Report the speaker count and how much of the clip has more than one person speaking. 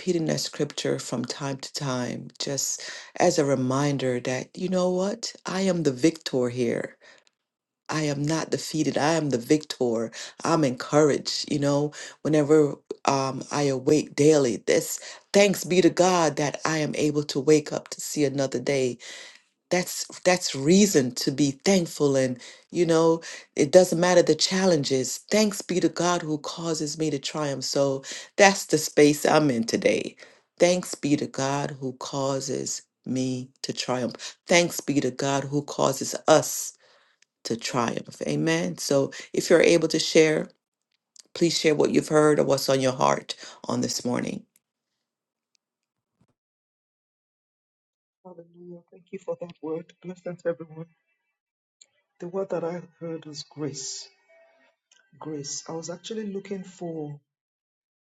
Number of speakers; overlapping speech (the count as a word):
two, no overlap